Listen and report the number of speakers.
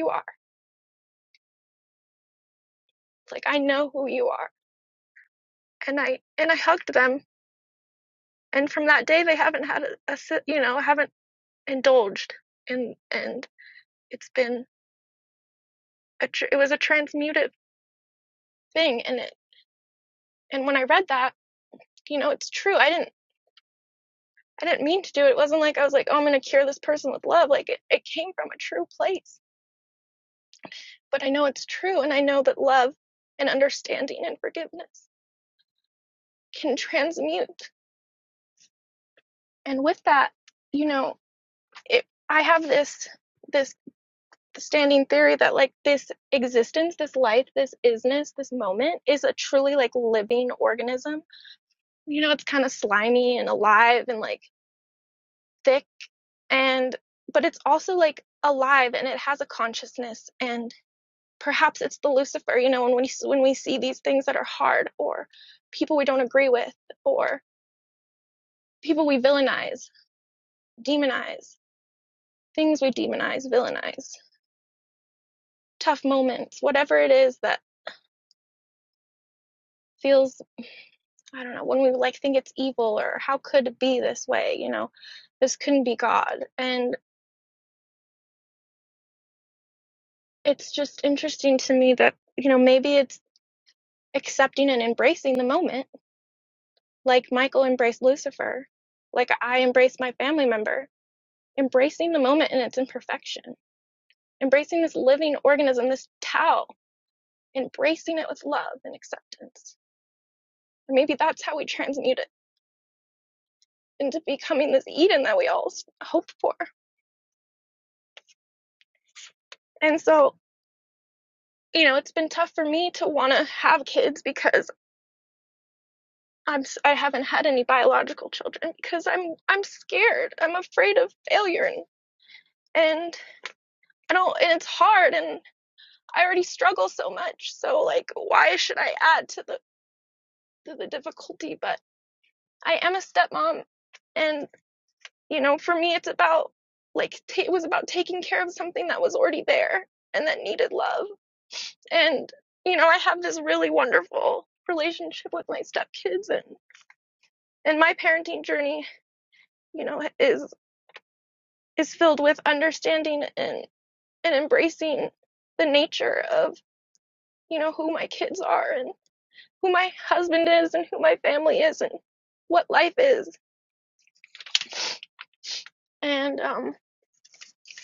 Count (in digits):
1